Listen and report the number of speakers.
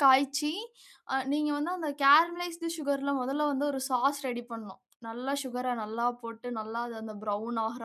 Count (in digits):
1